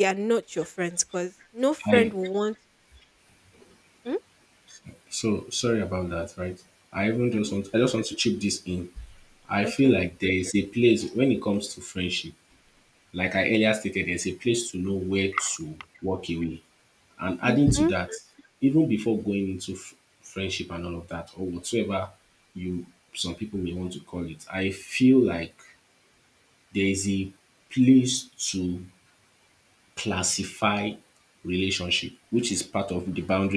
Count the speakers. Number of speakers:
two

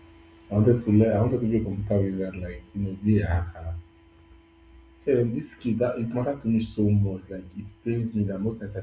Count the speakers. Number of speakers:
one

